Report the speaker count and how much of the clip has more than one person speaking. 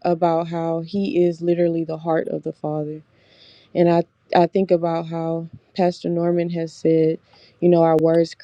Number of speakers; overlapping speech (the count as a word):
one, no overlap